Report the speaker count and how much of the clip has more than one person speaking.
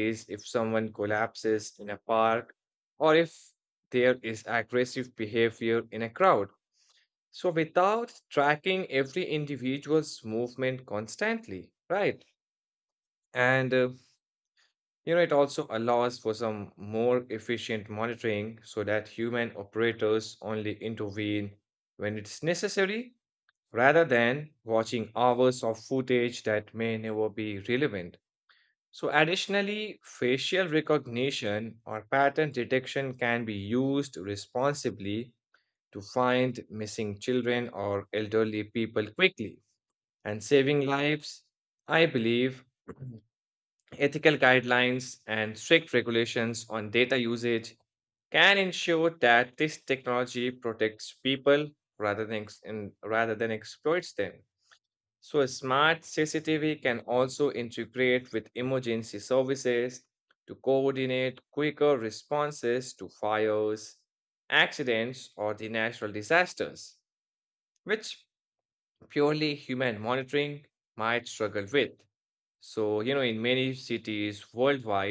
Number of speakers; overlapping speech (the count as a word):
one, no overlap